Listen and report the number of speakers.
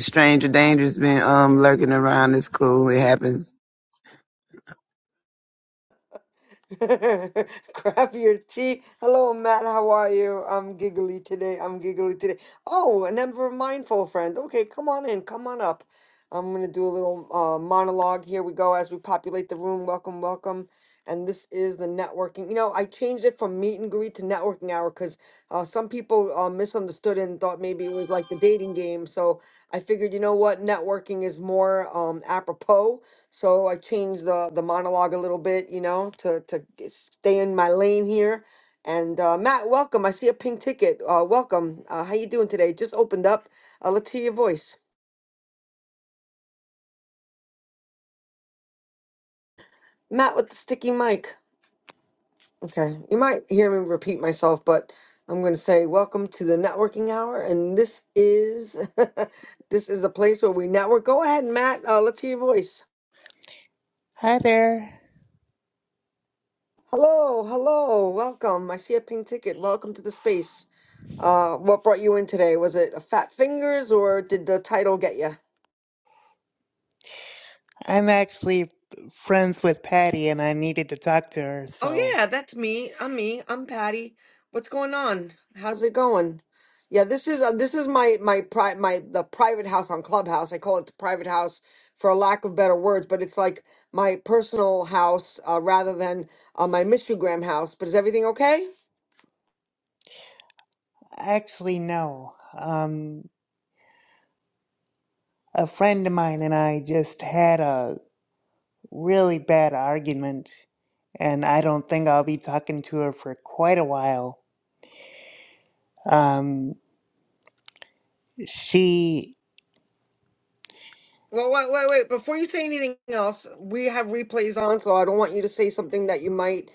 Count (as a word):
three